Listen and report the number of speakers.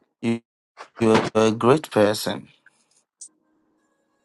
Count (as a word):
one